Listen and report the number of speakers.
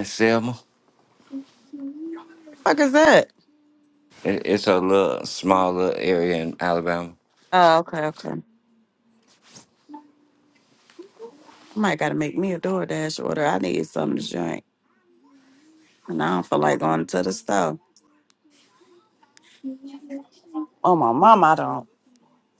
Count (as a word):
two